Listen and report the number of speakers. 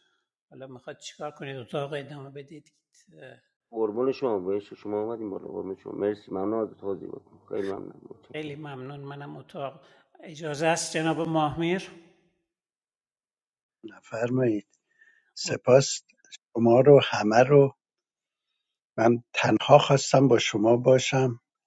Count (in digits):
3